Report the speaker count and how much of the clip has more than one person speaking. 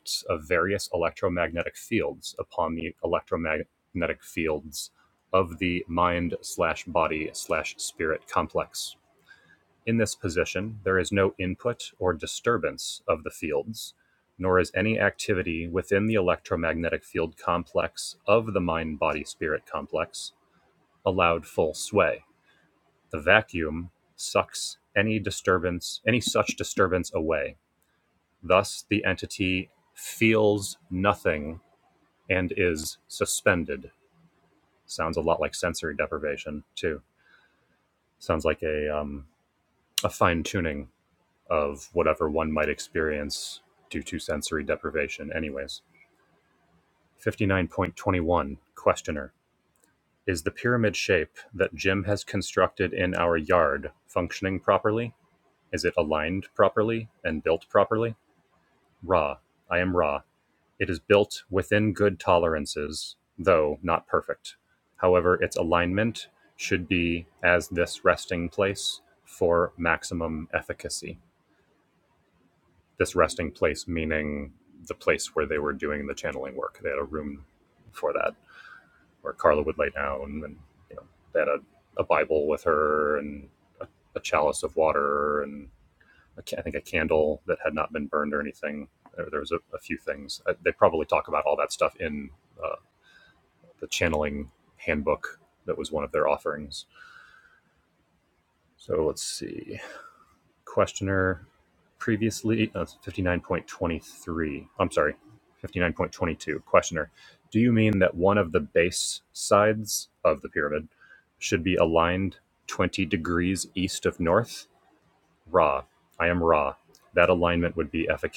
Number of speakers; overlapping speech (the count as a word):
one, no overlap